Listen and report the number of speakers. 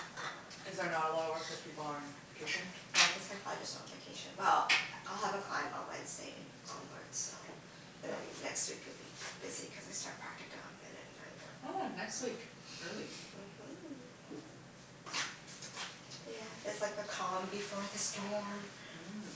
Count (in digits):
2